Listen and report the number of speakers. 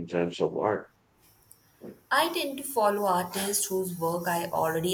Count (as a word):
two